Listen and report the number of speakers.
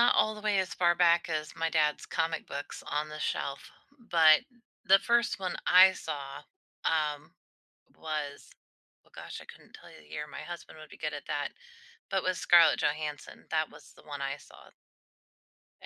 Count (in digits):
1